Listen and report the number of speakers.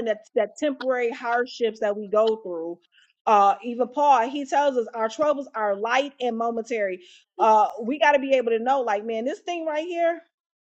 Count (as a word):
one